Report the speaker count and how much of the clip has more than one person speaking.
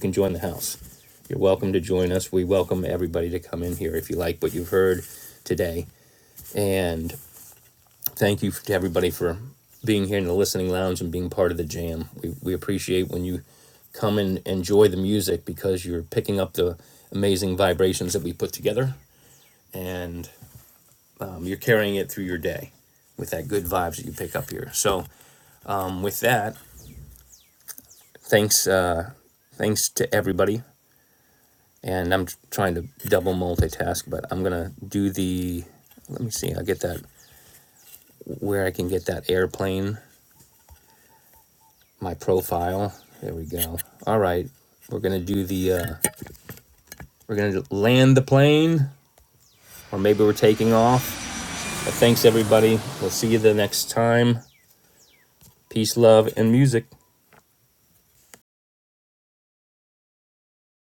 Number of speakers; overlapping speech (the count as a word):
one, no overlap